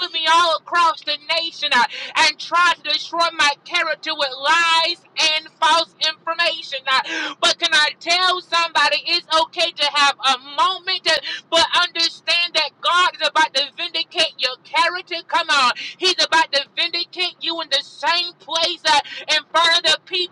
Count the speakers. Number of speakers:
1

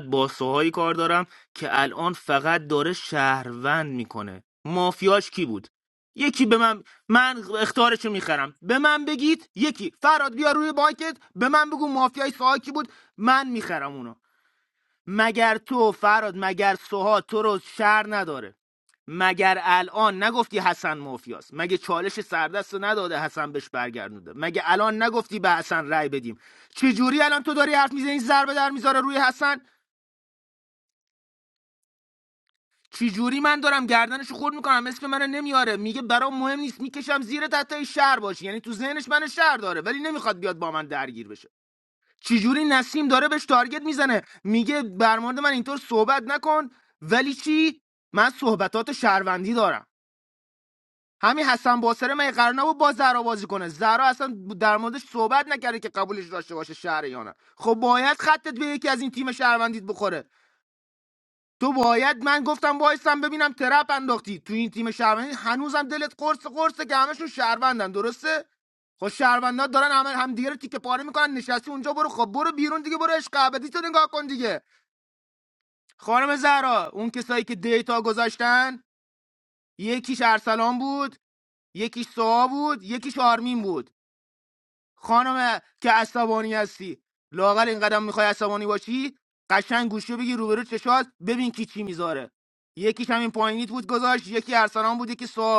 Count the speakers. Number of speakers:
1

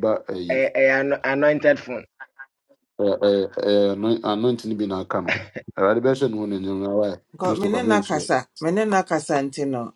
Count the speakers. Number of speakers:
3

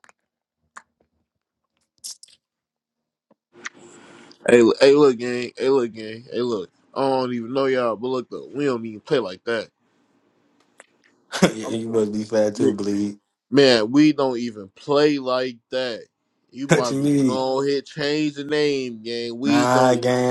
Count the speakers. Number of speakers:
2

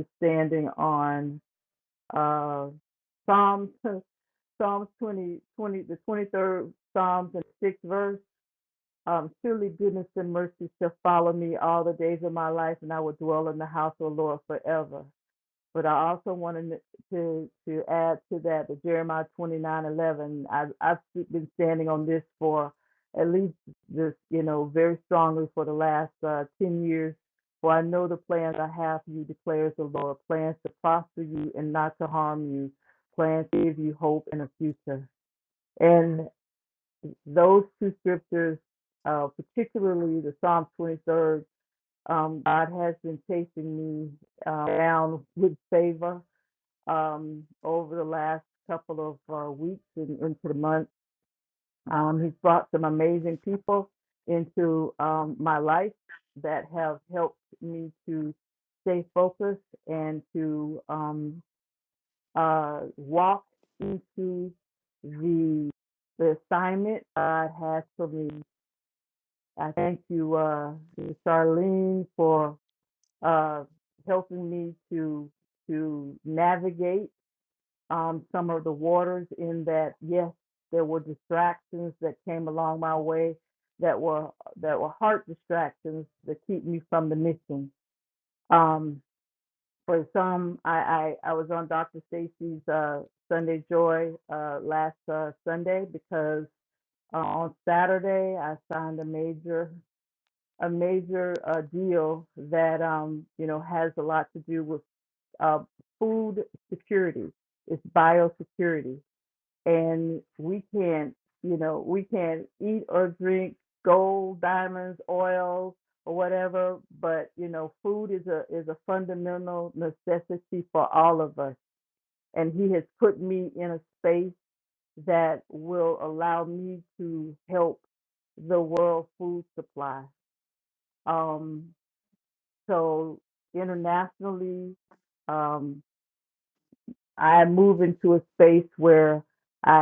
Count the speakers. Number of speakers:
1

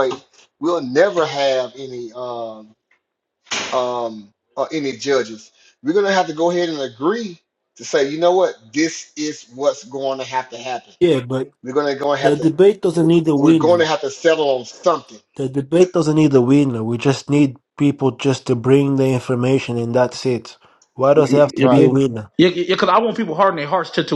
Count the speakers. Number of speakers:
3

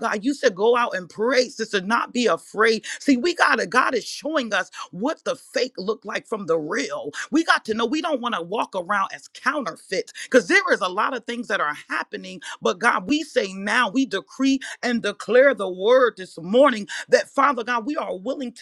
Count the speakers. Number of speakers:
1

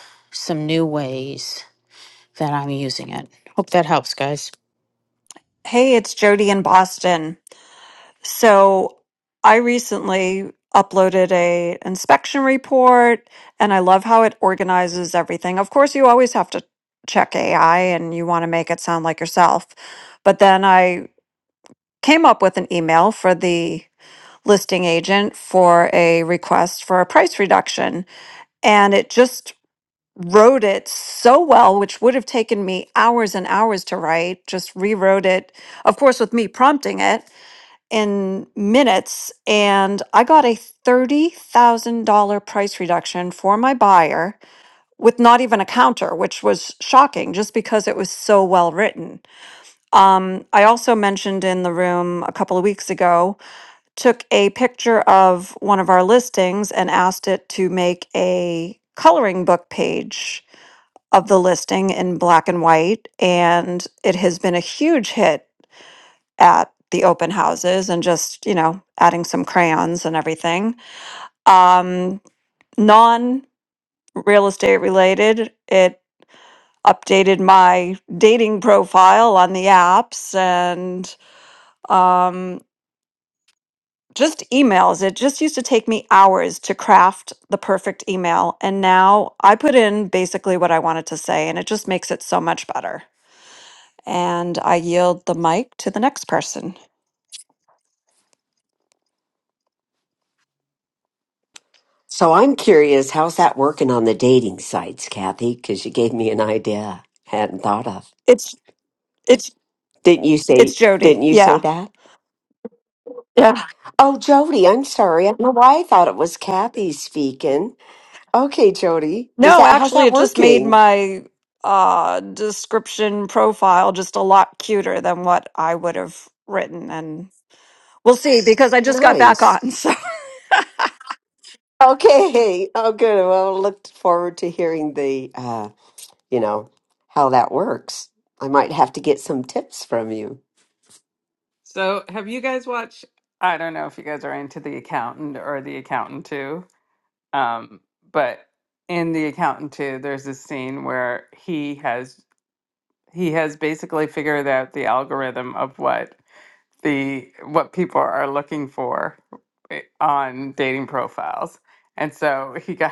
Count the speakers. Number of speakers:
4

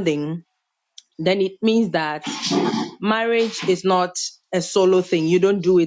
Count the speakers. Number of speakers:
1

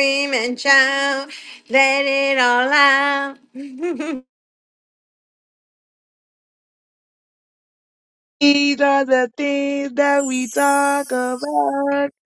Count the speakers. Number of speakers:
2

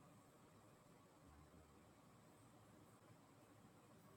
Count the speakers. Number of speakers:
0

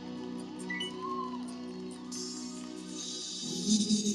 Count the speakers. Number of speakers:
0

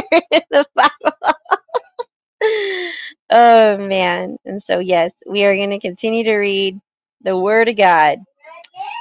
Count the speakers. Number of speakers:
1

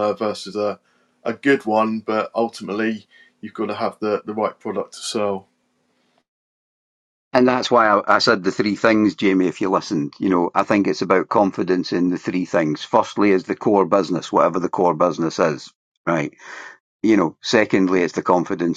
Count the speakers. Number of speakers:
2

